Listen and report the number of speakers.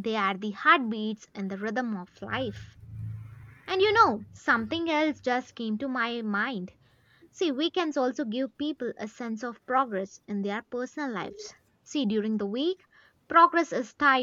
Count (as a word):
one